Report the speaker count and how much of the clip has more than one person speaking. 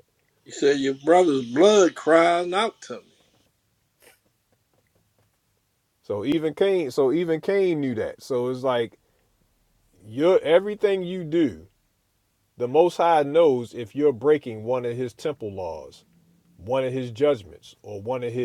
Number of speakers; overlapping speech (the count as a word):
two, no overlap